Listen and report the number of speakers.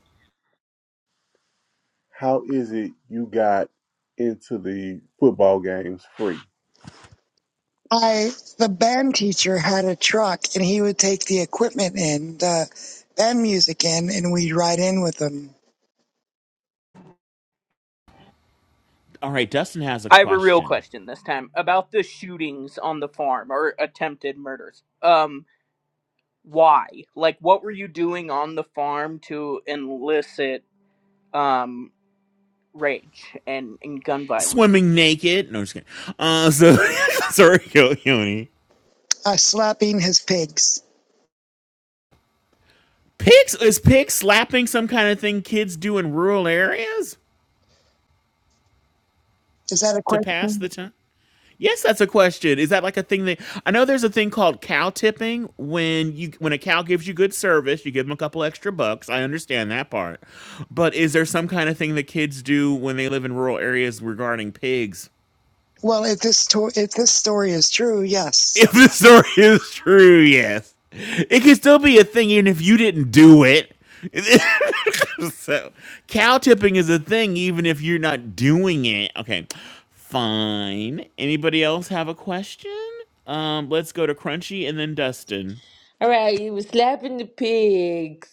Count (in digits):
5